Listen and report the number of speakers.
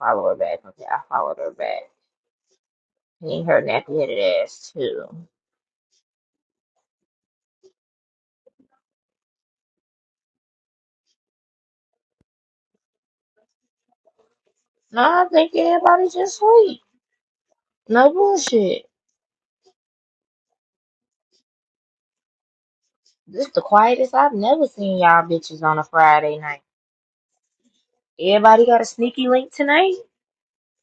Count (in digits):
1